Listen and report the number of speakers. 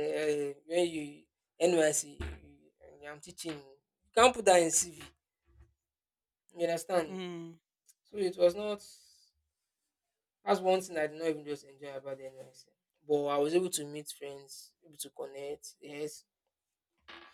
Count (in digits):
1